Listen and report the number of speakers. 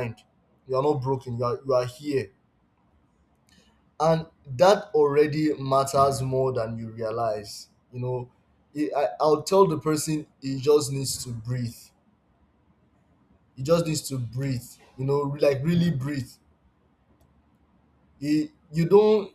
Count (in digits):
1